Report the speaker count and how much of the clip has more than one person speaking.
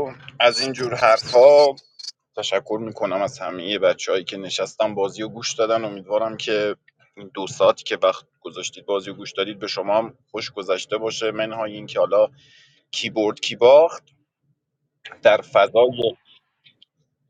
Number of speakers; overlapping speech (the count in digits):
1, no overlap